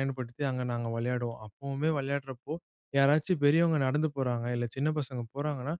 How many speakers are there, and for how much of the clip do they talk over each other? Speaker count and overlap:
1, no overlap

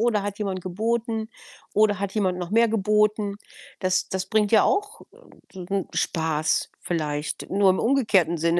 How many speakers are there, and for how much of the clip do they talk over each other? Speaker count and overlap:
1, no overlap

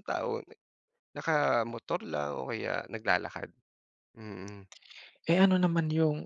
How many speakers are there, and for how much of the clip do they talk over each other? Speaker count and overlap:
2, no overlap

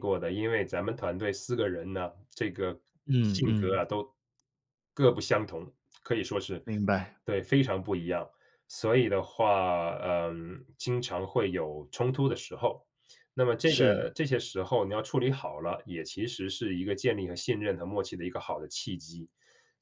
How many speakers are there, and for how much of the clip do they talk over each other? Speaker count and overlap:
2, about 4%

